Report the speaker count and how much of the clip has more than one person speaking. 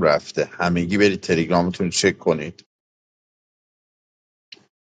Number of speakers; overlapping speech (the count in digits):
1, no overlap